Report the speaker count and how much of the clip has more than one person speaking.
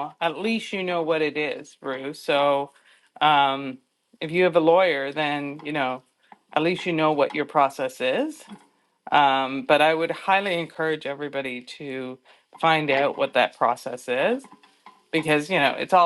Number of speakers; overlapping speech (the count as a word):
one, no overlap